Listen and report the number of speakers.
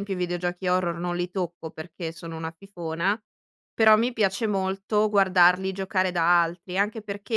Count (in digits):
1